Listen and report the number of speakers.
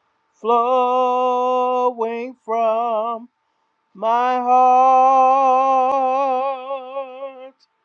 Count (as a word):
one